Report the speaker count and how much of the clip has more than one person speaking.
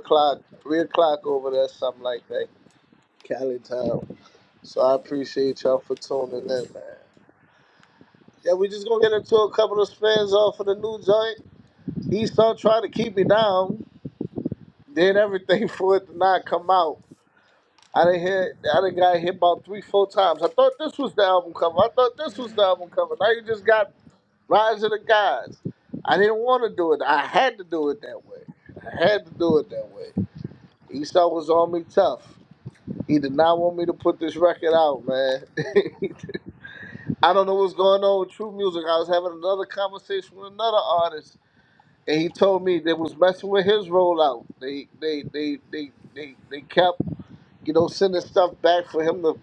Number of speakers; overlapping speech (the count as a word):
one, no overlap